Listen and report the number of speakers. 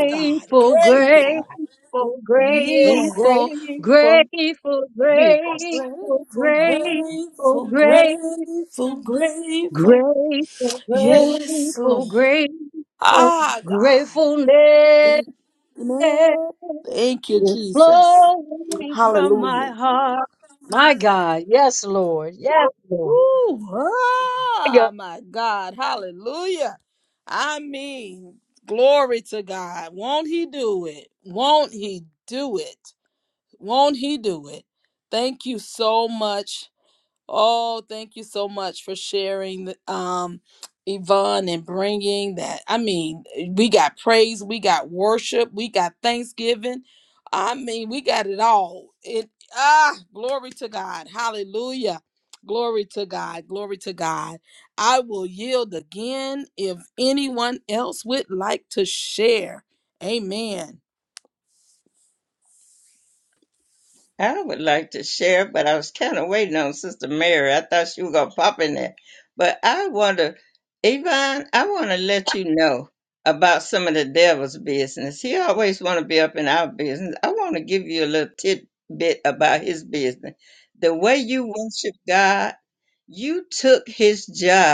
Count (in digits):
4